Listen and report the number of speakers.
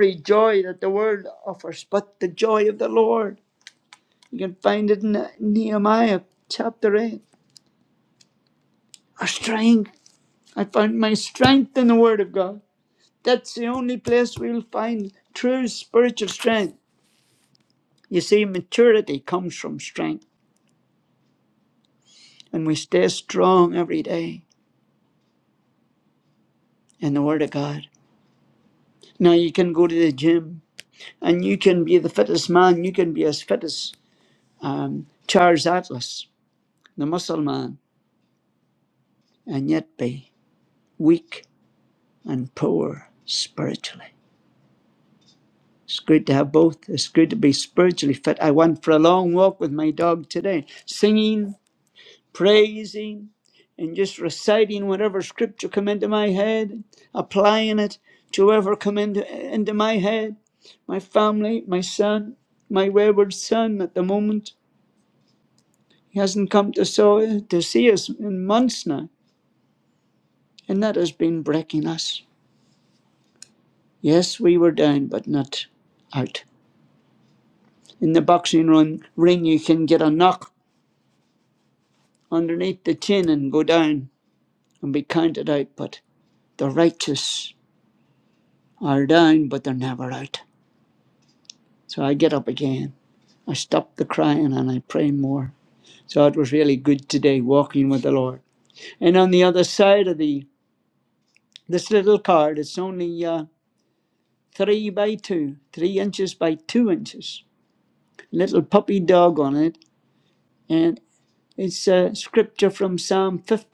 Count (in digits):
1